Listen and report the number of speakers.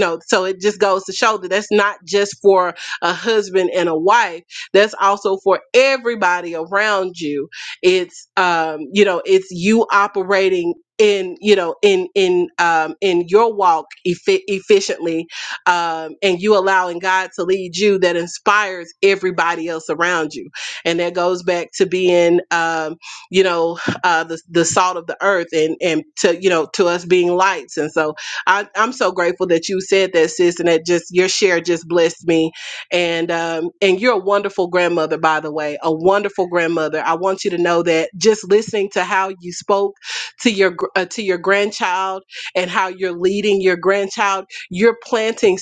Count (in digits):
1